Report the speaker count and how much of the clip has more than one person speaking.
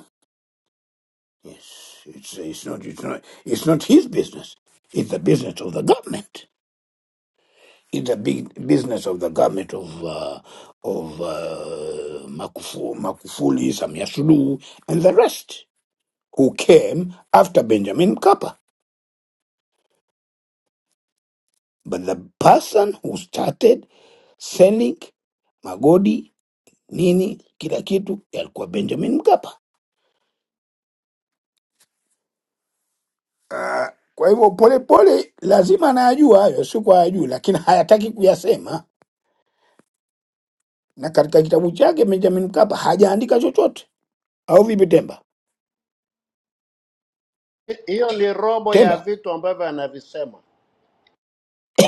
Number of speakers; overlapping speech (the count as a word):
two, about 1%